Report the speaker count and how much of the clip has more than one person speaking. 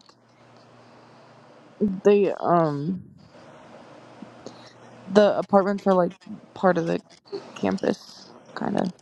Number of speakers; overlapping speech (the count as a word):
one, no overlap